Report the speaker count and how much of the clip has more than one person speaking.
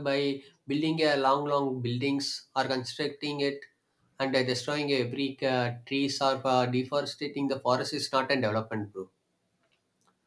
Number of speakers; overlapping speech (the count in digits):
1, no overlap